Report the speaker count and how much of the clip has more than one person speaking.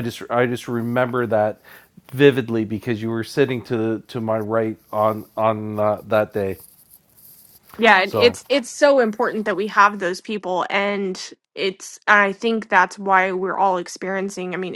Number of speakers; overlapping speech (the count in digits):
2, about 1%